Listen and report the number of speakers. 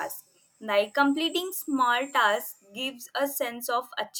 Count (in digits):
1